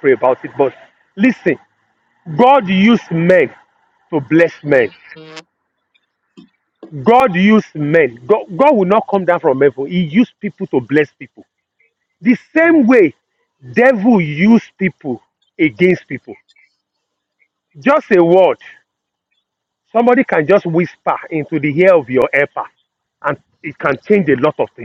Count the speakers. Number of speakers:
one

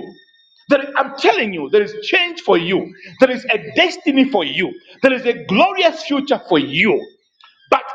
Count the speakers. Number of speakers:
one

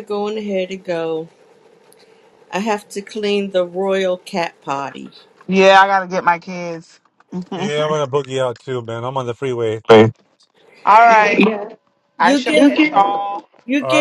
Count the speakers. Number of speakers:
three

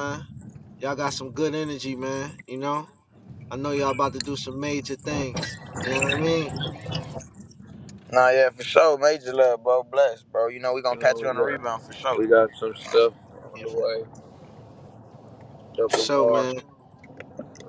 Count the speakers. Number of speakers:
three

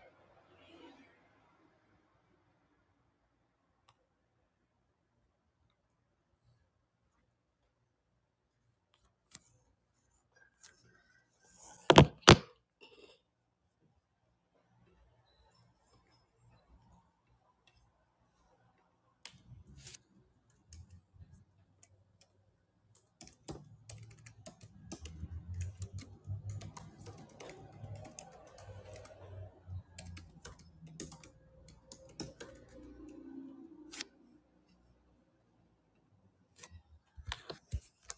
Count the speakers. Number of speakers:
zero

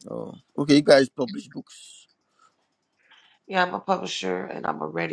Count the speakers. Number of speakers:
two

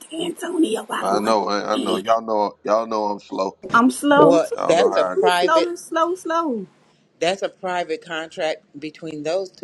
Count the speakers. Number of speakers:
three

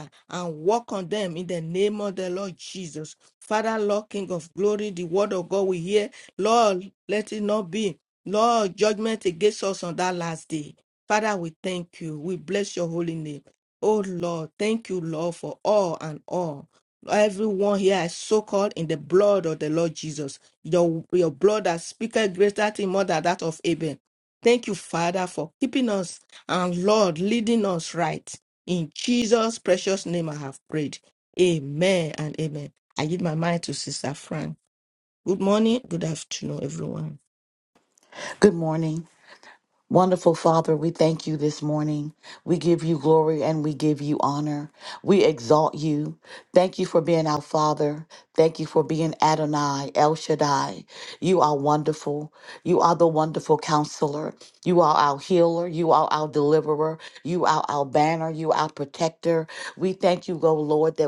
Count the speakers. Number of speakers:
two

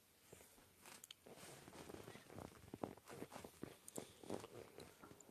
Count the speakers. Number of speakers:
zero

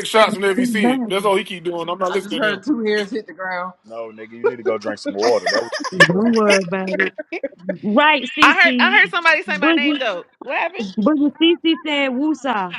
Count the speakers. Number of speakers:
five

